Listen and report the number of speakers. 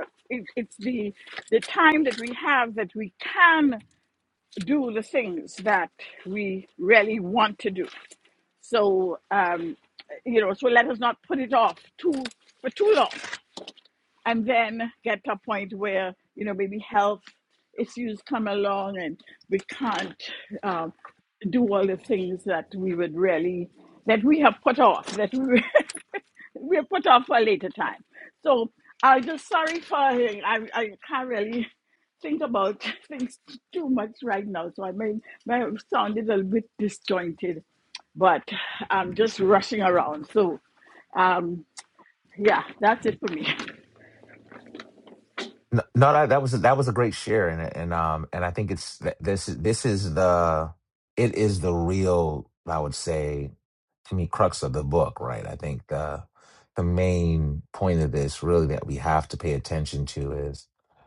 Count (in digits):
2